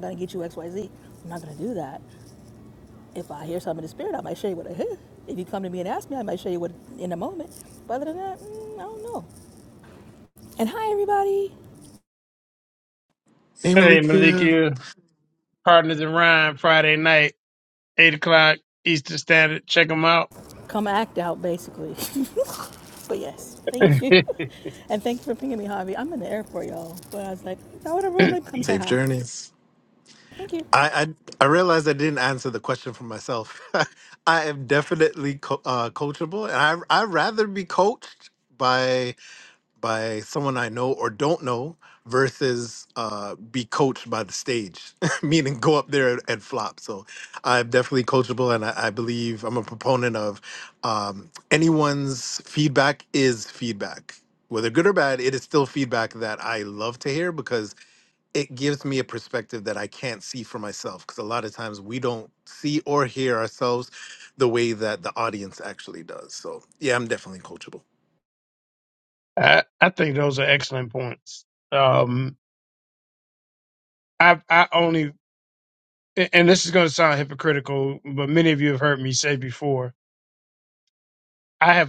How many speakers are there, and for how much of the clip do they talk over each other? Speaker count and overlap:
3, about 2%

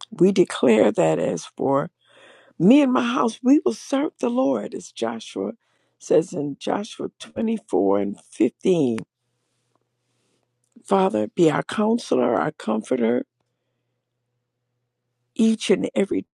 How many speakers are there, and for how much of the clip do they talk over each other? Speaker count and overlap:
1, no overlap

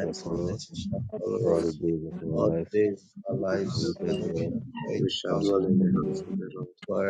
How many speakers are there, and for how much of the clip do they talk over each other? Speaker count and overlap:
3, about 46%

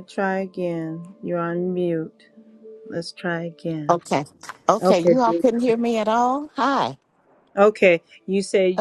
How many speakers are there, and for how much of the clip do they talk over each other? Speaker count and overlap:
2, about 9%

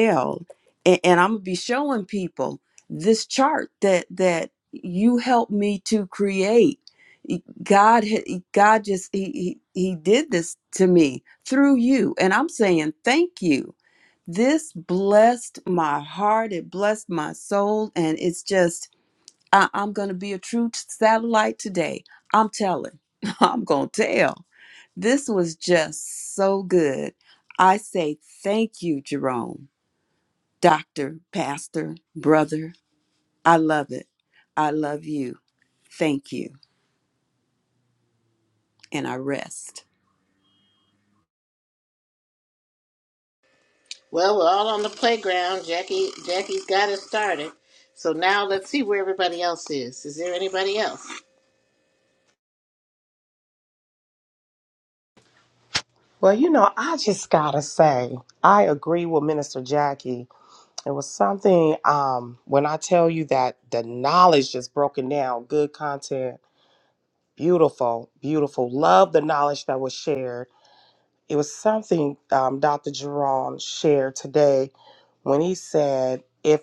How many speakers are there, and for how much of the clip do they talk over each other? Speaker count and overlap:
3, no overlap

